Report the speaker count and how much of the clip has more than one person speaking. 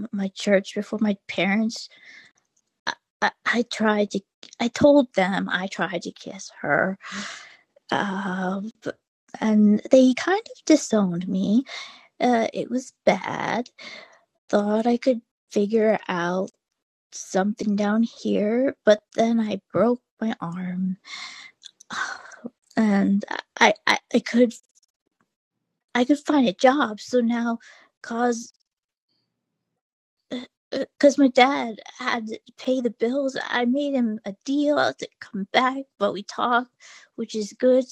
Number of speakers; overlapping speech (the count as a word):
one, no overlap